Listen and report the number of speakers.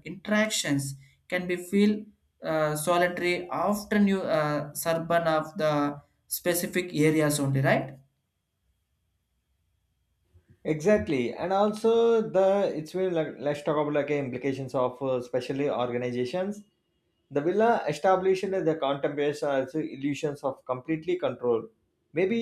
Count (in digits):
2